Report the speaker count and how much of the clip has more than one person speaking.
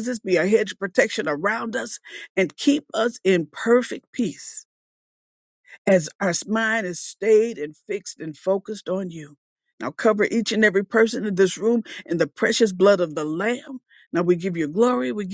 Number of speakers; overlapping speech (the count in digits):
1, no overlap